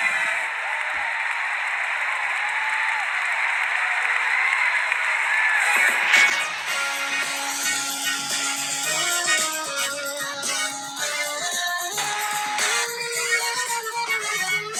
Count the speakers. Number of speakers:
0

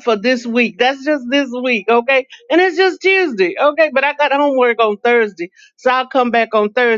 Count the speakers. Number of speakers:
1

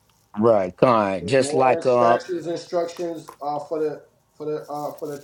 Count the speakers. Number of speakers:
2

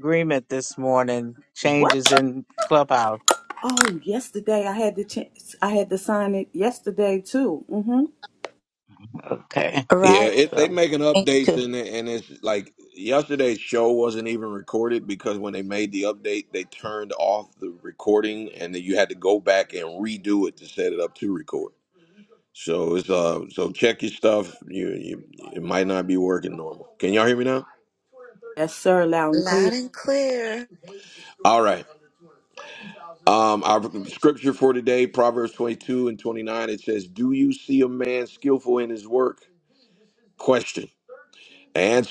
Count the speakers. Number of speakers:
4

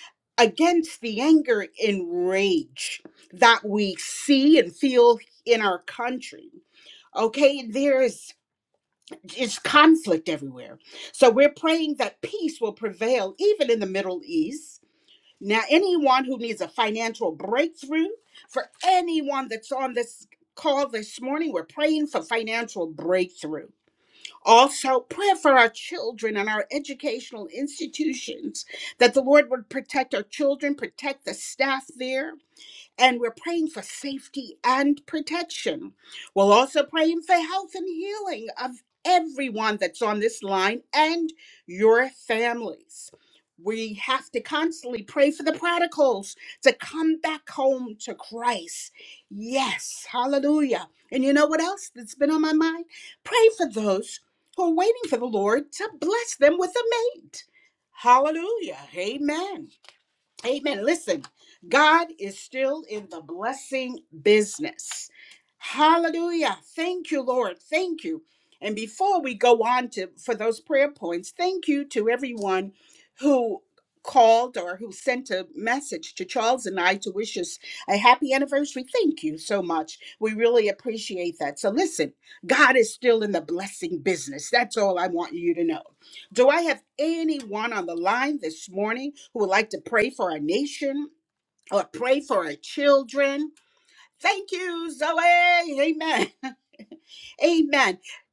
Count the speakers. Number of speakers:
1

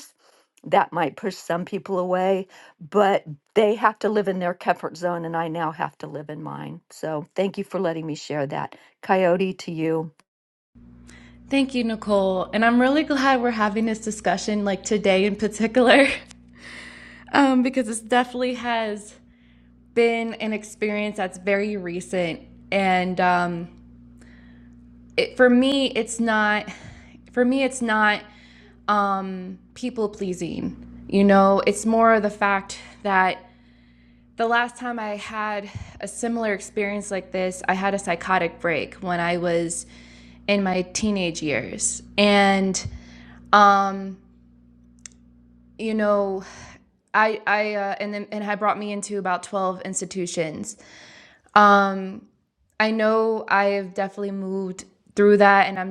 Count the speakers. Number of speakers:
2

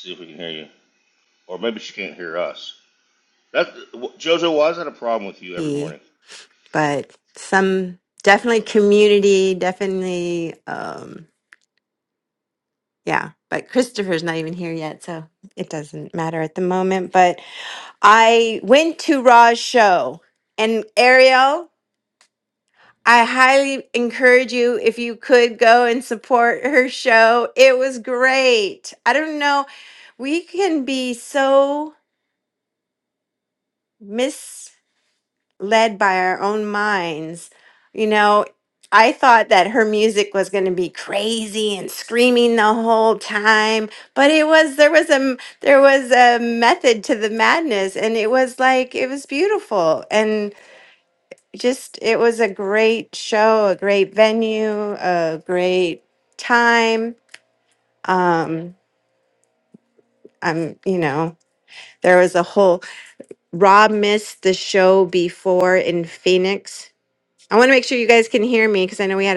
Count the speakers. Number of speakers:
2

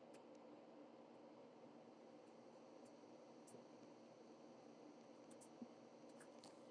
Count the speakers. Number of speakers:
0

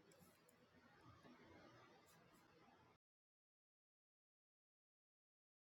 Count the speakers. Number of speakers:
0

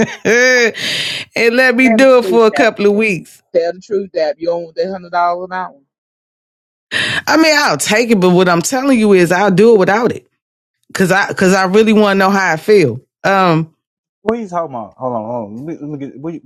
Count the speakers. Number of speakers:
3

